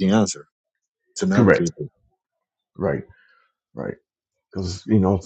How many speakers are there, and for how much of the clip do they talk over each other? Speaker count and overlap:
two, about 6%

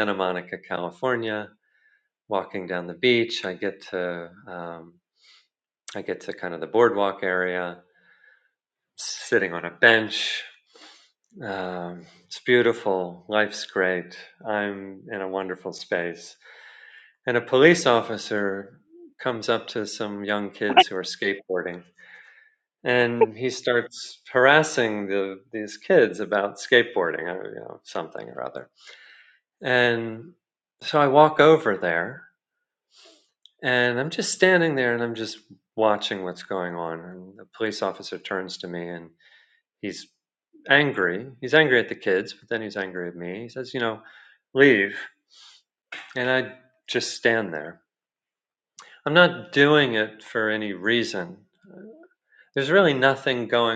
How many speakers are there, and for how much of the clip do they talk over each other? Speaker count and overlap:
one, no overlap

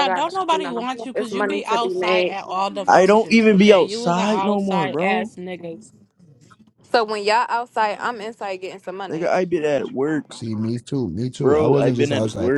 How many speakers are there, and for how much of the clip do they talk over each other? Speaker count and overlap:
four, about 49%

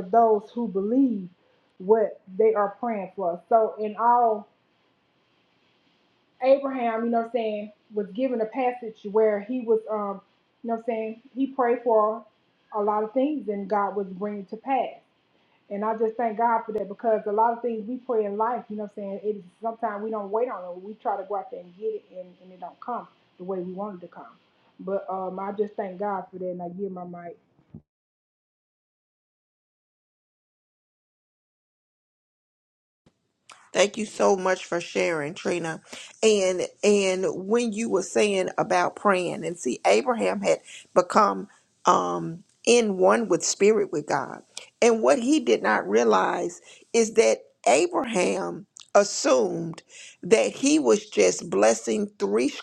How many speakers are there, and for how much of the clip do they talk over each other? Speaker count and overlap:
two, no overlap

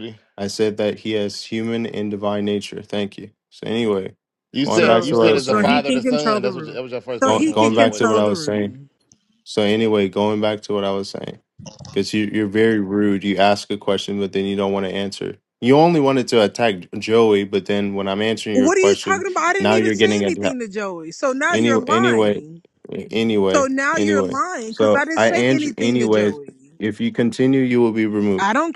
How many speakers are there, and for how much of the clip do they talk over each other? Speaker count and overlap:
three, about 30%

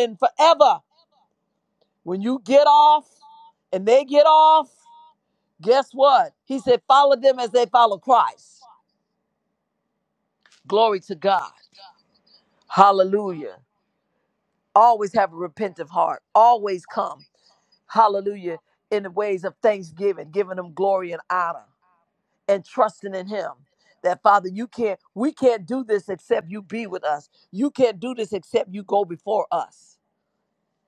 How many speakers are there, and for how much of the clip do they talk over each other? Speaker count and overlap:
one, no overlap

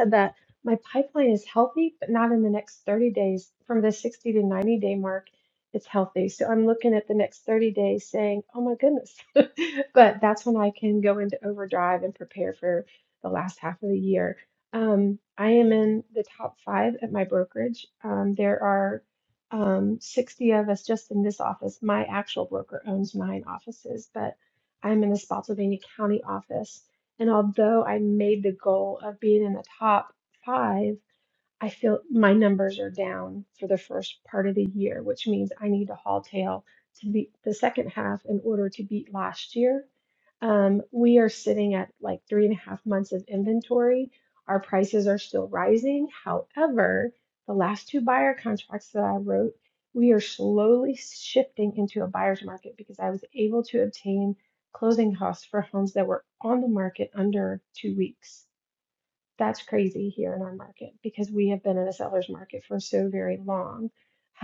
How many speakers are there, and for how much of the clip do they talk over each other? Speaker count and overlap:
one, no overlap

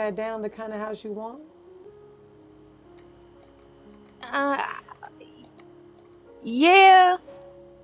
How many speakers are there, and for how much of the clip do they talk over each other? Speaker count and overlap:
two, no overlap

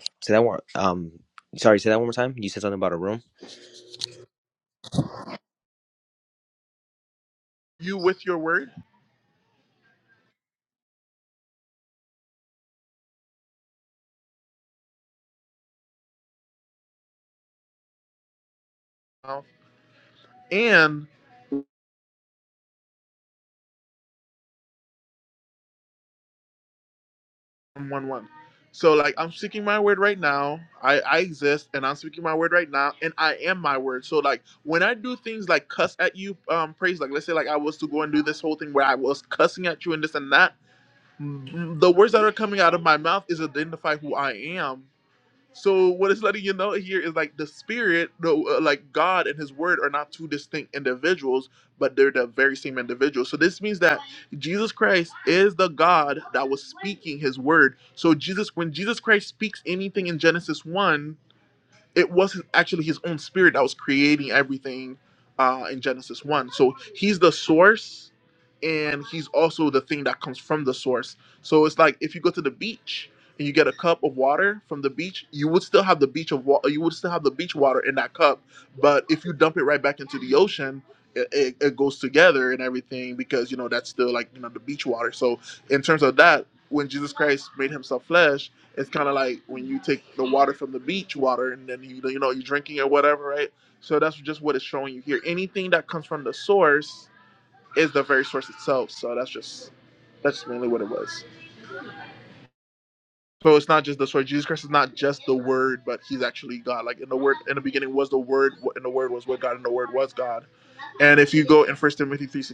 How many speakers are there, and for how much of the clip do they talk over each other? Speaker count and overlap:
two, no overlap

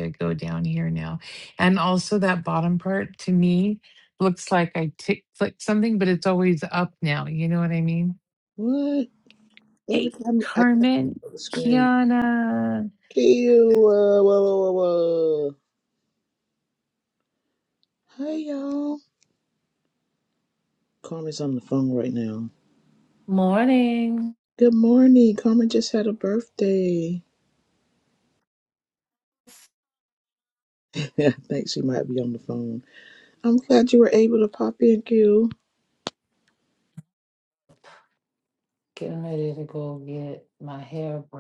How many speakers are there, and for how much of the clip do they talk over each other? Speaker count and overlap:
three, about 4%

